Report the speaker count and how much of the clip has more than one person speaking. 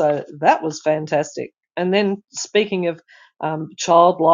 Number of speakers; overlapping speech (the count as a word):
one, no overlap